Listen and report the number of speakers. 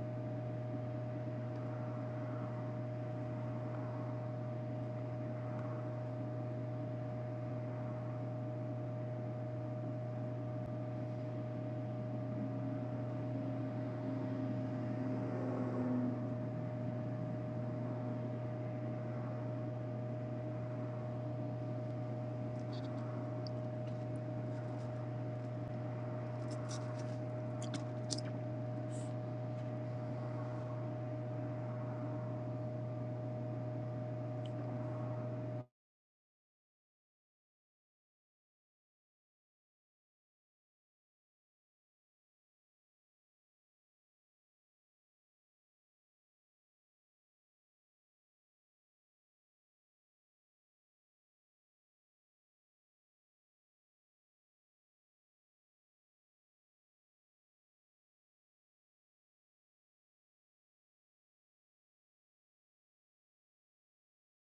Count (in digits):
0